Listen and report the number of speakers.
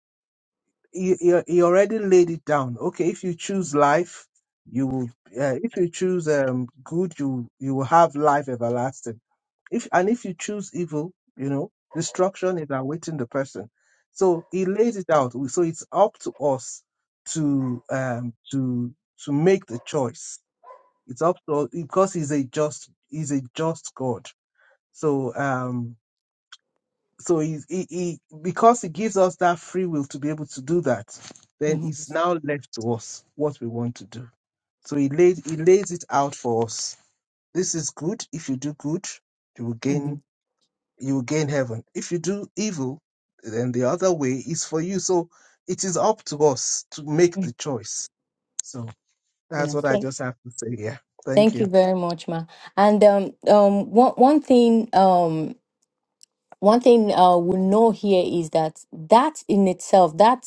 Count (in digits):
2